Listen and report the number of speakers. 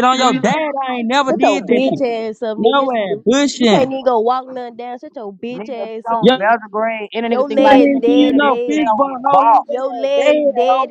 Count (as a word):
three